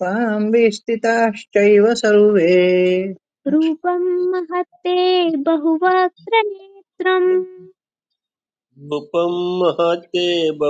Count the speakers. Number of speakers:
three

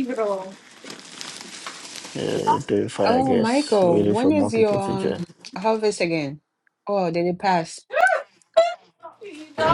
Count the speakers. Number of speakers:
three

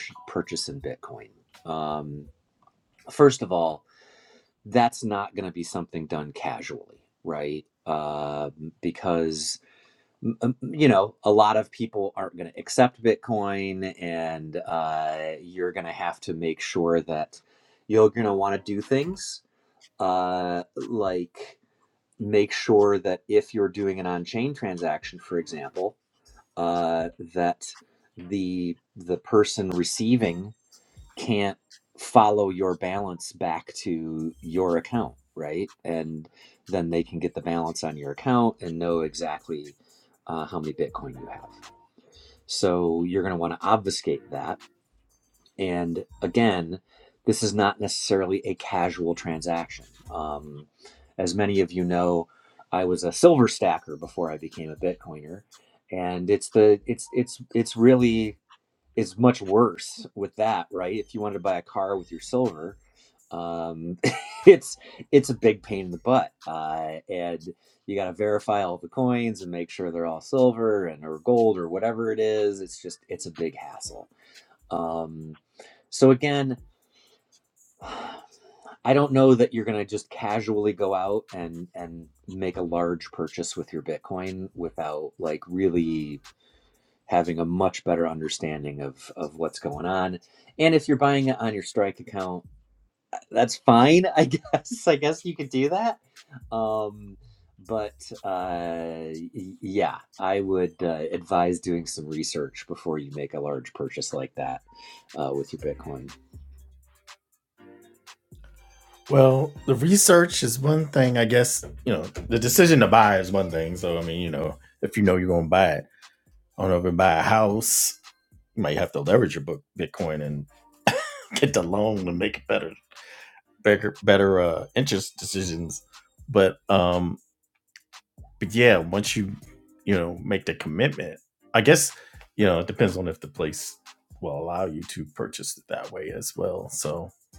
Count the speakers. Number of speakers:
two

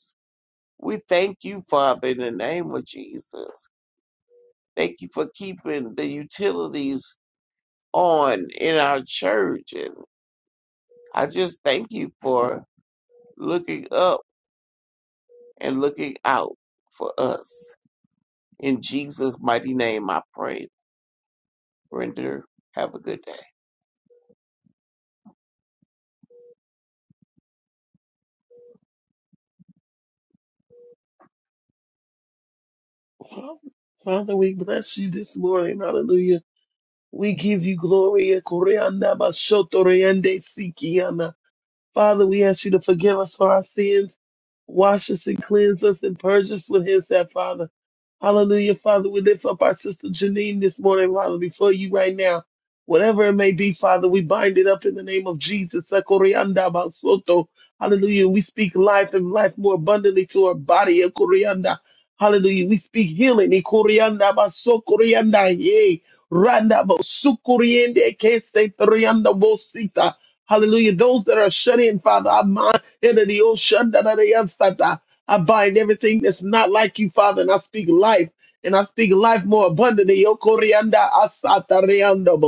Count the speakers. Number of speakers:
two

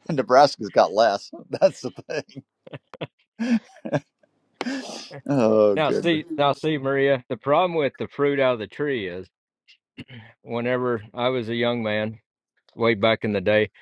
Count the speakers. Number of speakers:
two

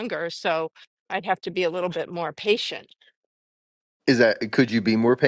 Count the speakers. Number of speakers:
two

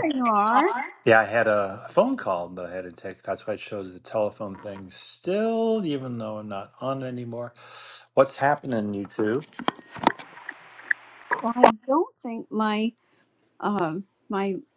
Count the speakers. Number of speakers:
two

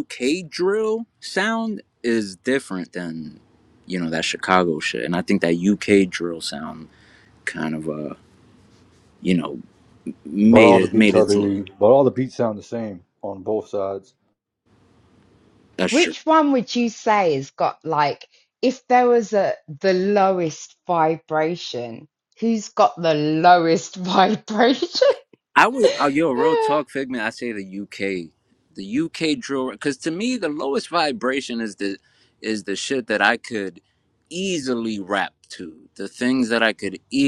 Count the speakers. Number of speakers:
three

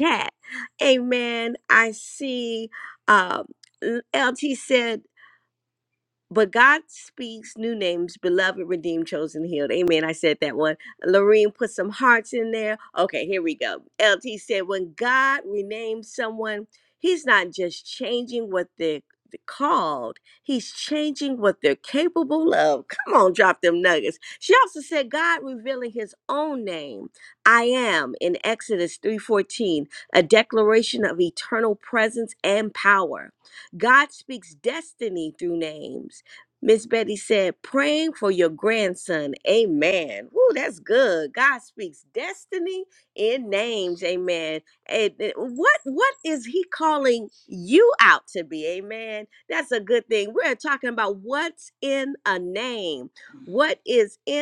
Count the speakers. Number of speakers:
one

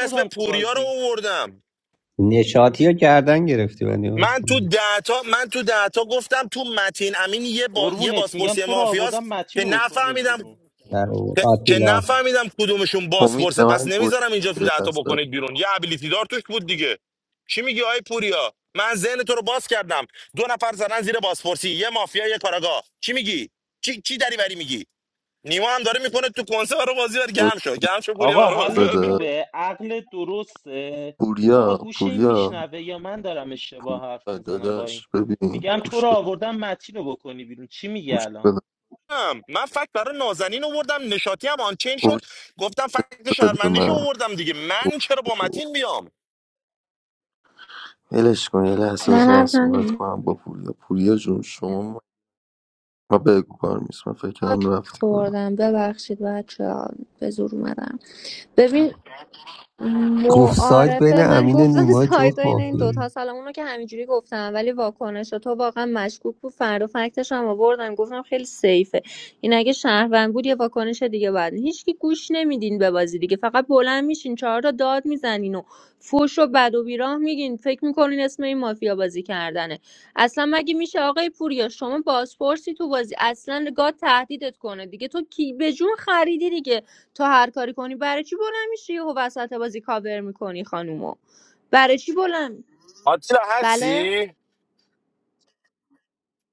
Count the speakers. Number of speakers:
five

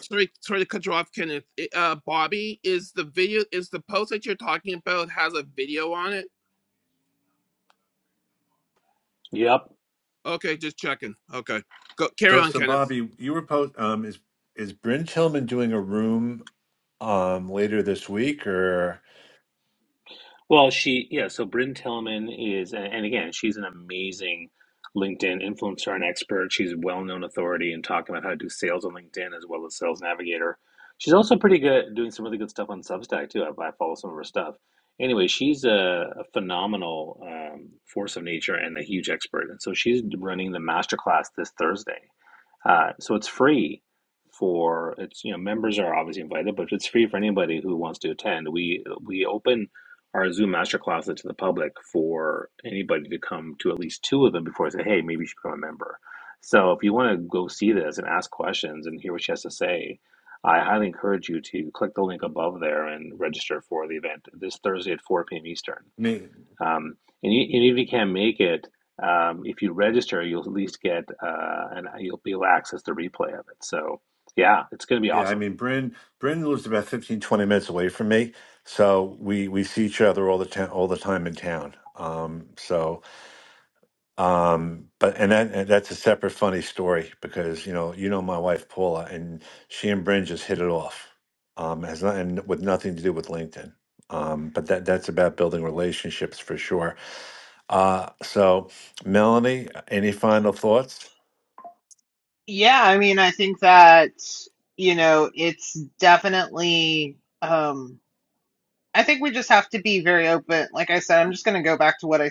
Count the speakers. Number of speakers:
four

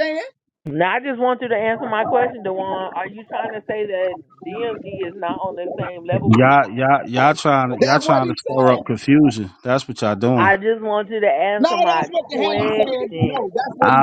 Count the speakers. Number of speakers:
three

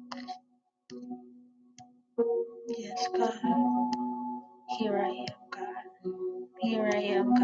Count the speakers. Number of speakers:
one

